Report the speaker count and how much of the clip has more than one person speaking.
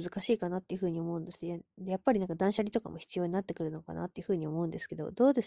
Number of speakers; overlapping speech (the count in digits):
1, no overlap